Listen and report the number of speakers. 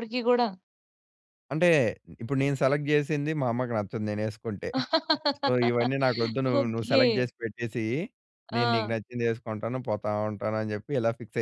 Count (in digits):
2